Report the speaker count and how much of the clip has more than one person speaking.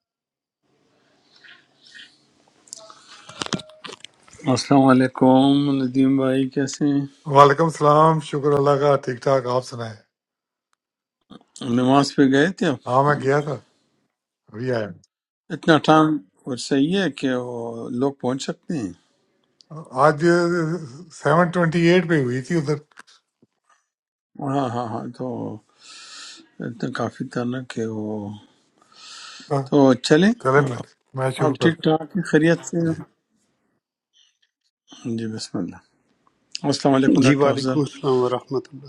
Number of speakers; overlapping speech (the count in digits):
3, about 3%